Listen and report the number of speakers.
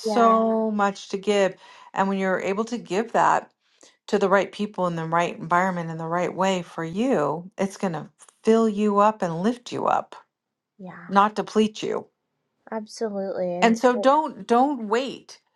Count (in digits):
2